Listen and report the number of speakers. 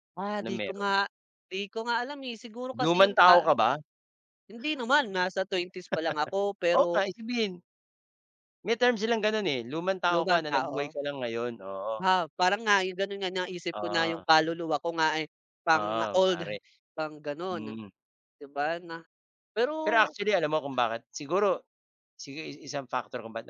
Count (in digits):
2